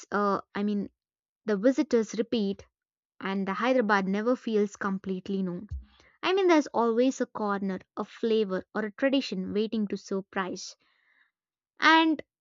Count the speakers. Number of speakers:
one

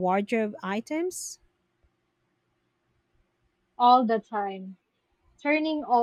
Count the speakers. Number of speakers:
two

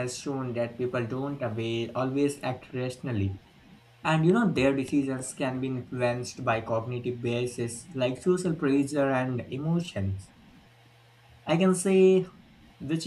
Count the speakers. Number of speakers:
one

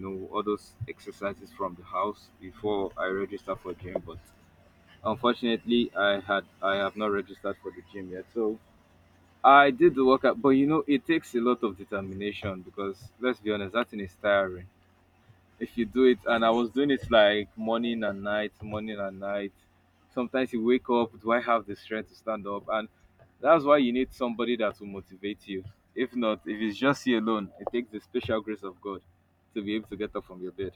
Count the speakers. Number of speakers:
one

